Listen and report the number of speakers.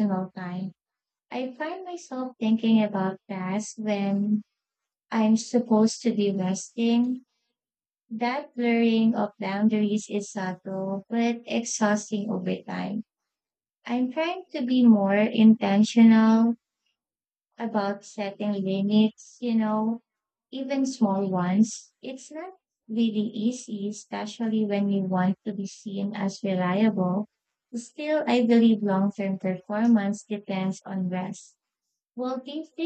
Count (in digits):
1